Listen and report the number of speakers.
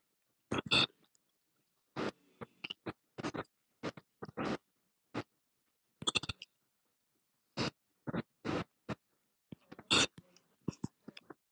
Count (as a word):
zero